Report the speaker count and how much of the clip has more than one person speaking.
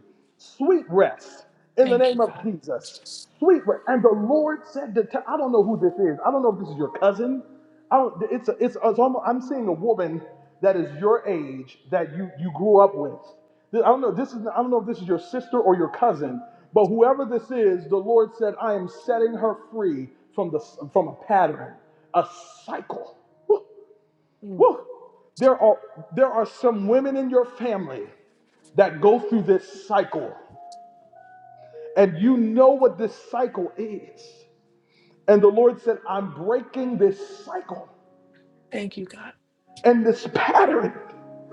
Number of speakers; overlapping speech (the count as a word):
two, about 2%